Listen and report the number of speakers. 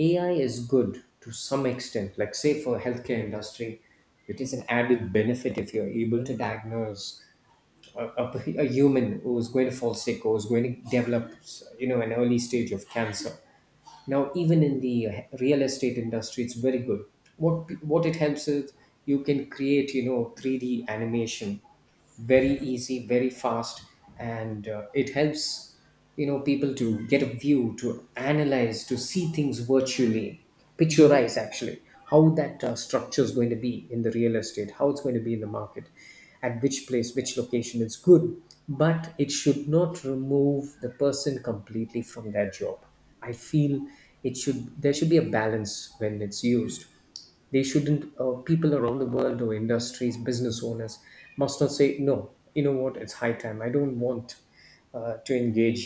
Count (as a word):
one